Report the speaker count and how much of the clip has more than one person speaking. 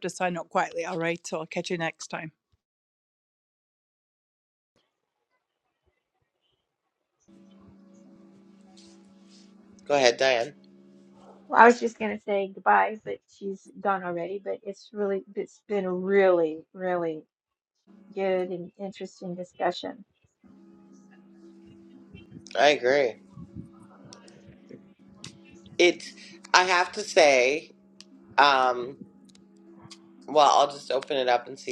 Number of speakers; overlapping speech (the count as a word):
three, no overlap